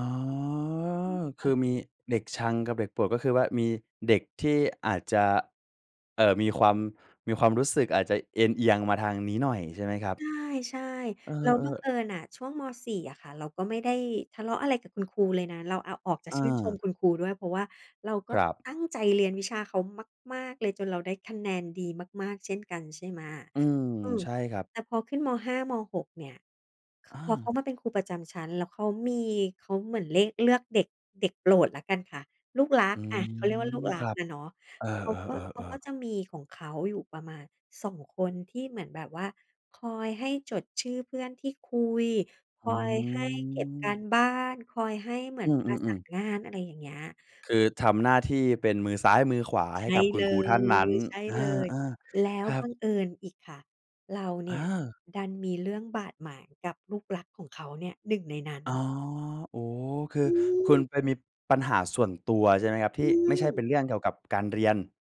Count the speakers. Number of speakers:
2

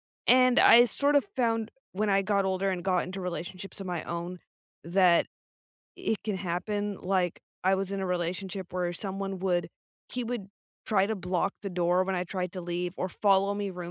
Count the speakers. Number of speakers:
1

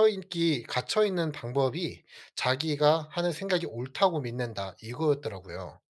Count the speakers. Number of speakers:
1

